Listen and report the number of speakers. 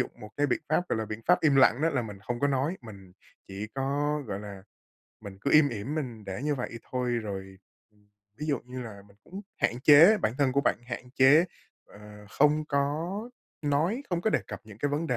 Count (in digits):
1